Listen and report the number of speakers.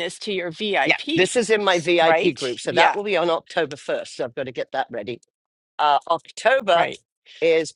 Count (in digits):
2